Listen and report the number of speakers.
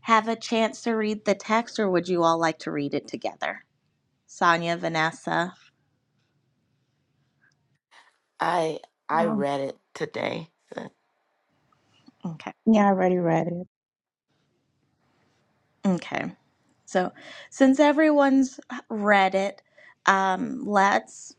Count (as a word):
three